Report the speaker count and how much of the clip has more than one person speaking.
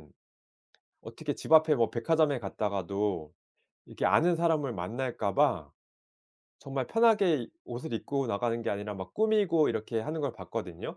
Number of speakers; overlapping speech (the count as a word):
one, no overlap